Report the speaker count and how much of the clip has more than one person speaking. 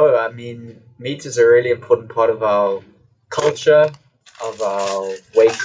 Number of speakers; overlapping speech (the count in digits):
1, no overlap